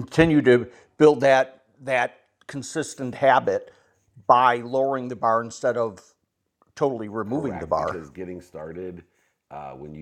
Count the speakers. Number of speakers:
two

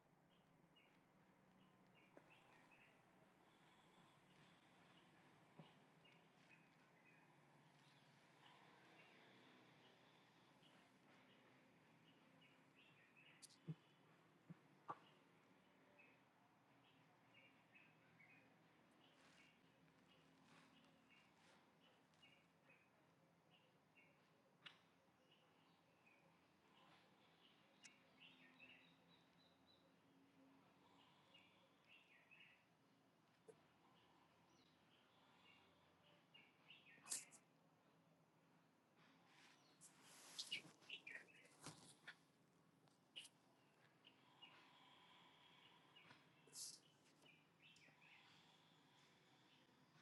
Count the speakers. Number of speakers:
zero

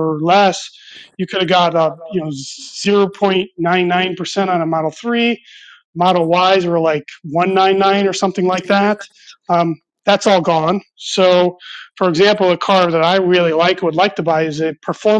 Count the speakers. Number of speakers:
one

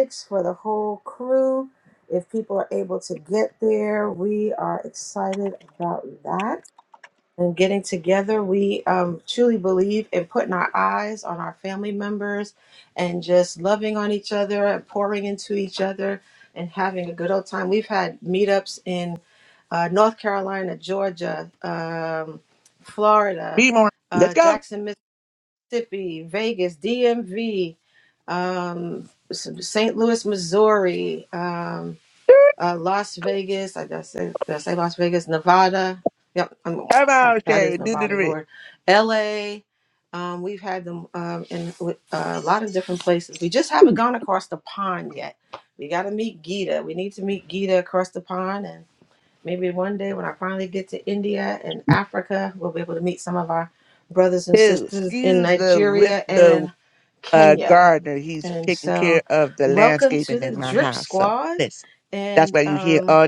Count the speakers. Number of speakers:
two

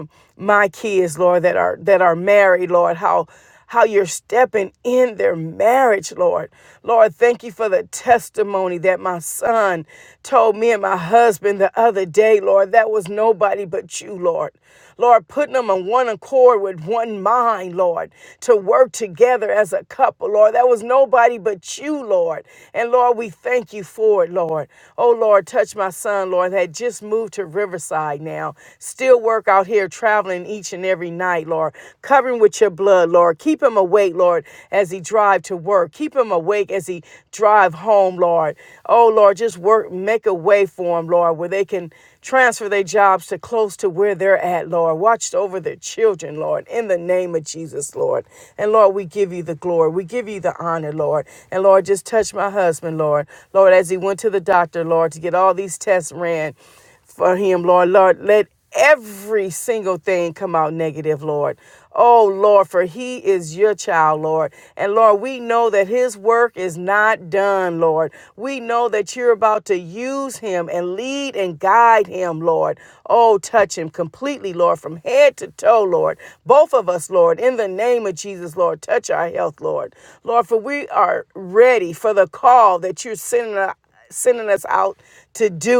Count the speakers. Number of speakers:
one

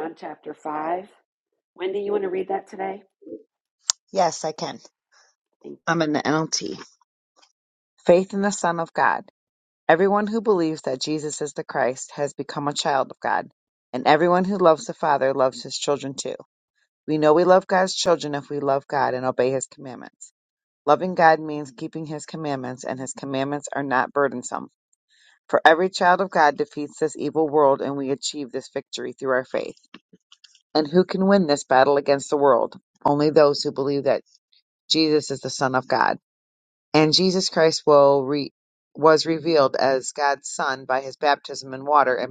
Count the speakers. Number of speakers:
two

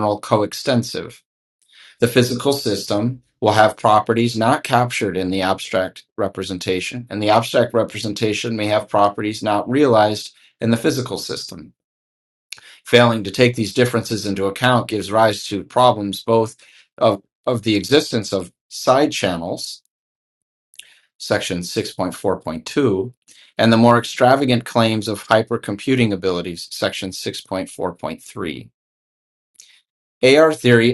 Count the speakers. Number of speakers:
one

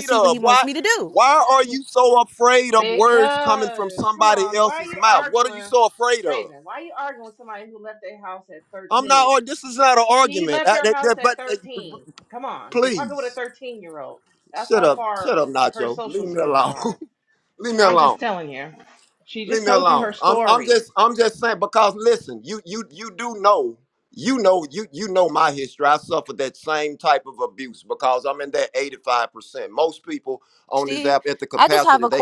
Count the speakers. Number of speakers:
three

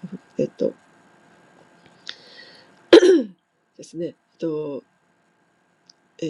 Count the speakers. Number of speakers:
one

